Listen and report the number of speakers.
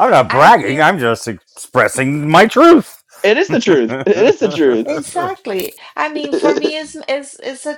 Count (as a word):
three